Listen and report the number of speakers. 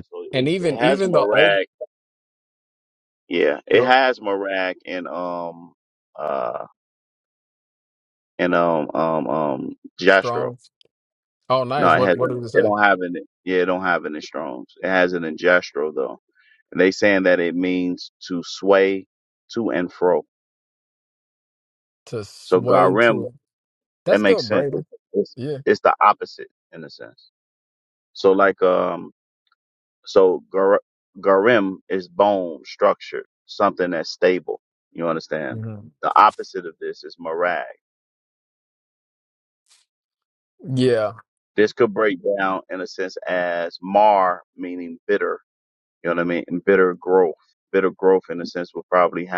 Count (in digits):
2